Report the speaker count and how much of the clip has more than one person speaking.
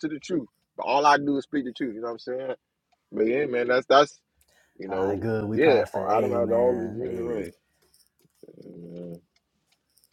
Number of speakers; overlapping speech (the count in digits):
2, about 26%